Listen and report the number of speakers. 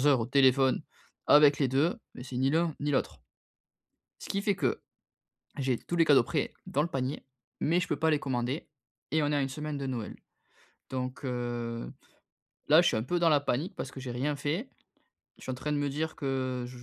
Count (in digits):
1